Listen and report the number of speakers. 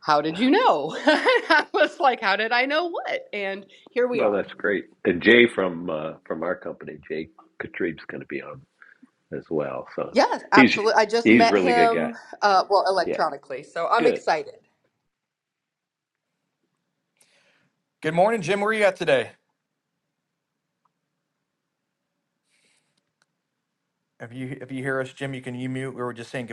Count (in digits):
3